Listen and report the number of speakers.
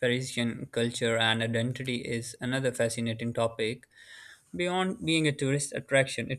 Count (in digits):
1